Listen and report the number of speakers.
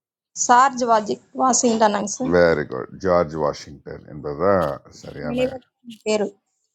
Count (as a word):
two